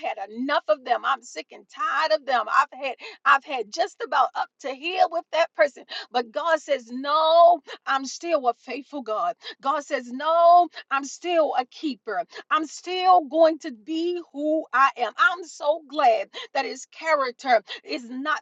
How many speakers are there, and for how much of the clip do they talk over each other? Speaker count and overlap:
one, no overlap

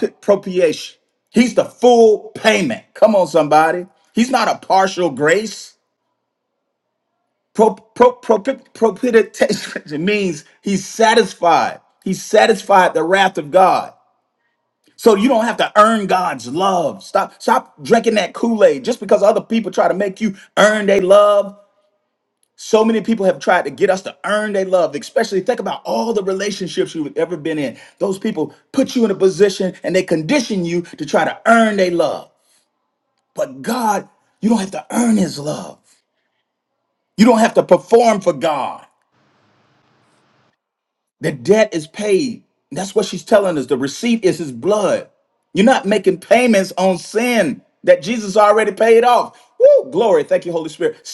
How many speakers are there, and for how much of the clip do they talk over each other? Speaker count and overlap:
one, no overlap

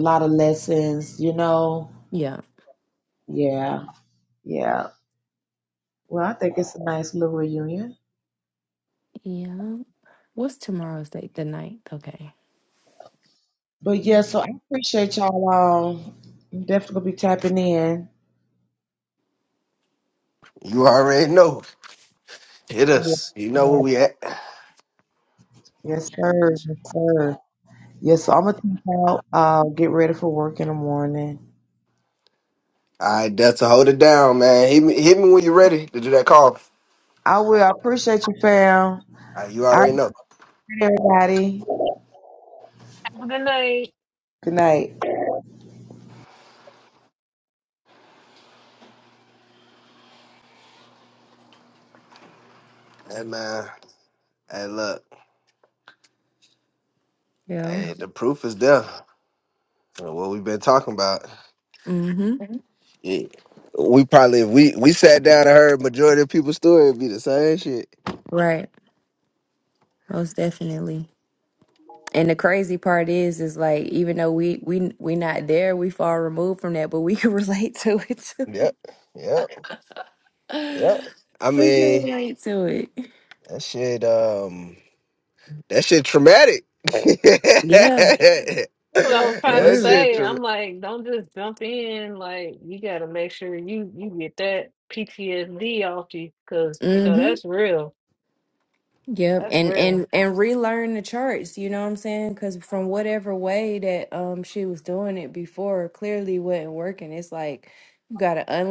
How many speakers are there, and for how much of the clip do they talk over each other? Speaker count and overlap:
four, about 4%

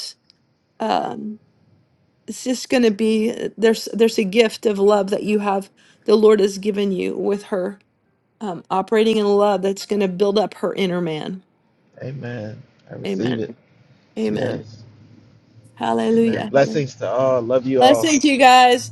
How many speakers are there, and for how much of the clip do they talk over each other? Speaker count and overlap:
two, about 9%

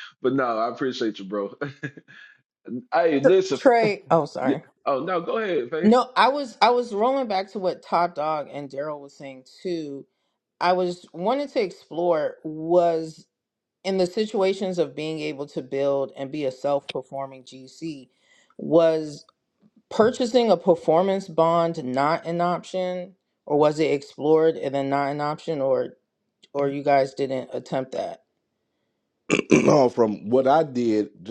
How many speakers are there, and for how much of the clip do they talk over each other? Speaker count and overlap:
three, about 2%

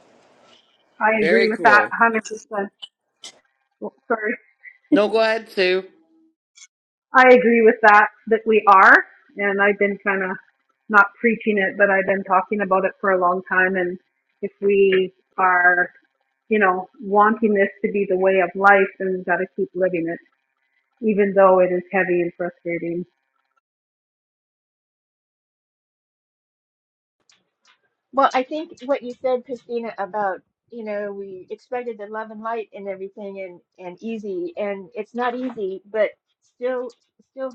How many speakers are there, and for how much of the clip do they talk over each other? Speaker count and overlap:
three, about 2%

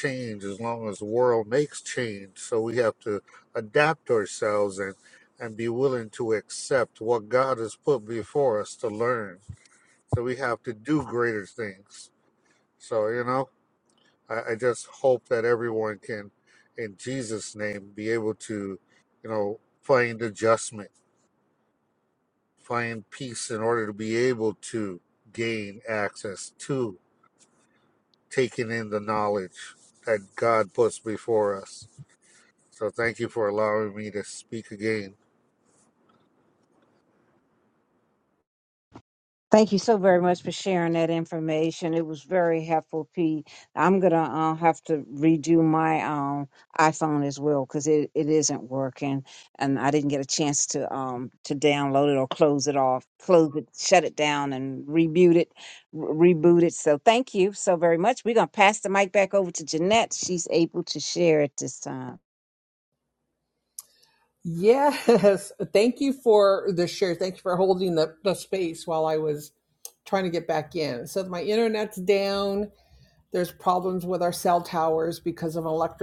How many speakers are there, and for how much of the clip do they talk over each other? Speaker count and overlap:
three, no overlap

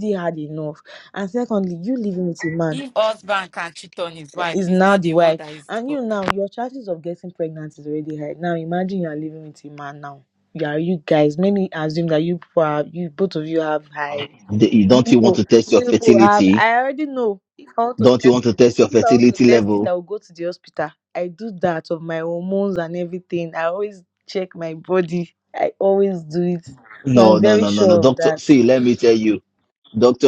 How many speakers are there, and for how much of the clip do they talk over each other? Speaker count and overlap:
three, about 19%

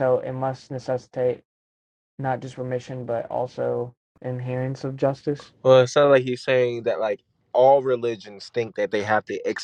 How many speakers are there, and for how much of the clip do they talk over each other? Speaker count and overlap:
two, no overlap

